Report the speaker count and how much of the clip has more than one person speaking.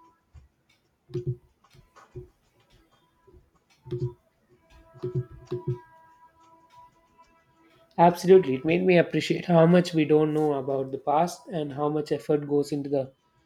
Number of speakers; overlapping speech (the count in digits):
1, no overlap